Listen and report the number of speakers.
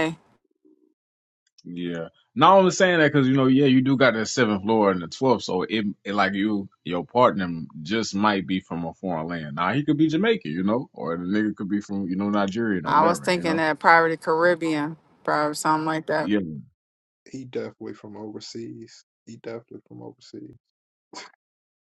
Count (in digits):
3